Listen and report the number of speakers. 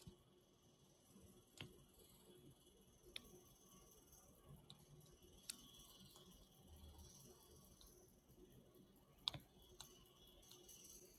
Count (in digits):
0